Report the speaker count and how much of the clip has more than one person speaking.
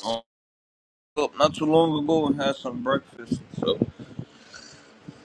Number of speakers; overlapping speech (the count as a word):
one, no overlap